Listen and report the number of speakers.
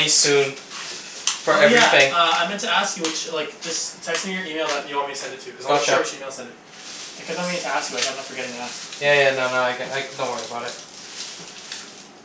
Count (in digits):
2